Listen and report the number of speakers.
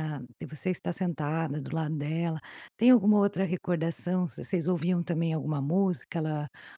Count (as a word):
one